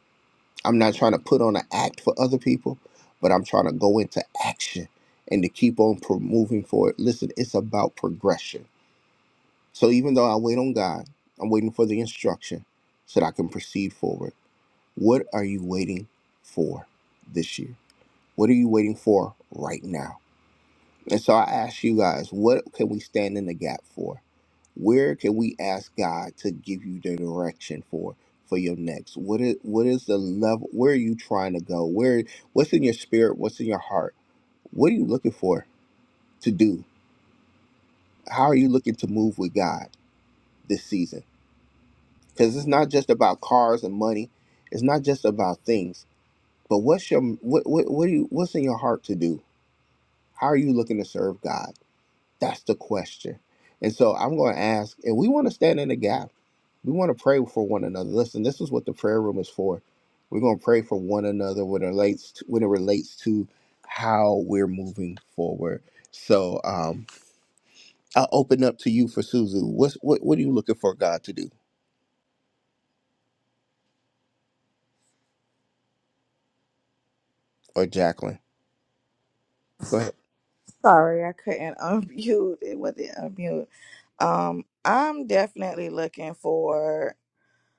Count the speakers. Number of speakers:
2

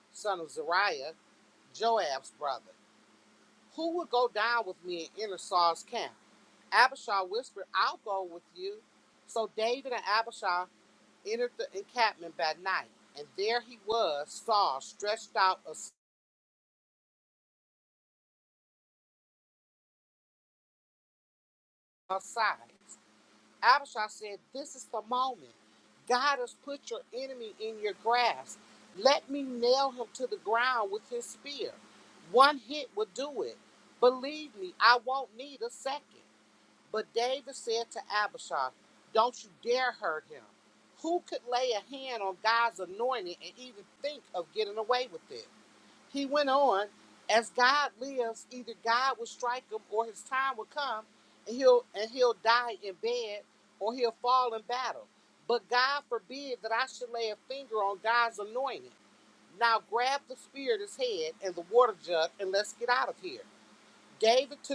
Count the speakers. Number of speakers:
1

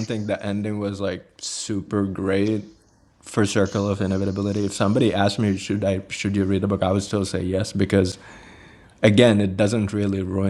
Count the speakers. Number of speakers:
1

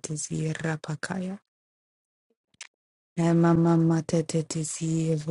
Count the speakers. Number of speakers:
1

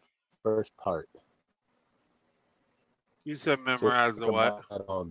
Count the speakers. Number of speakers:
2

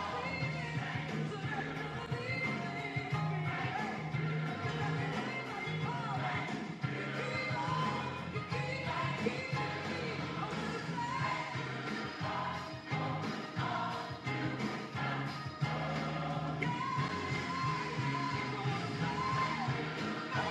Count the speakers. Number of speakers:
0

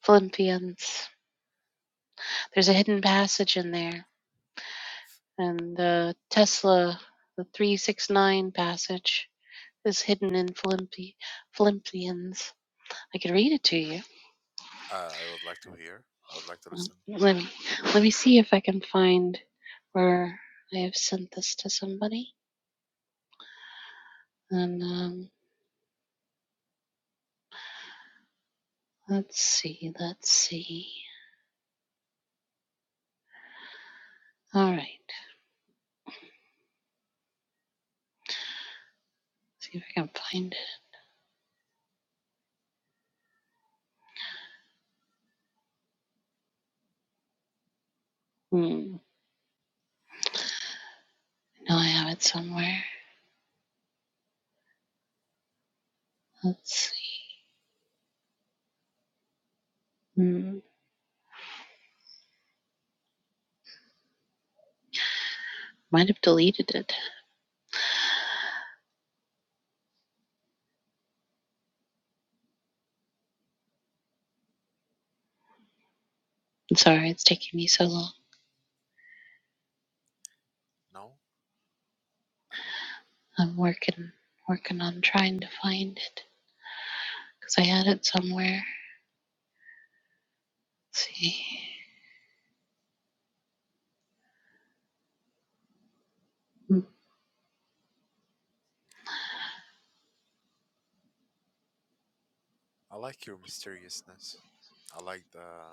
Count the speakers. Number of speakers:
2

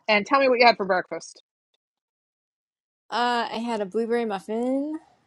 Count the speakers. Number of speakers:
2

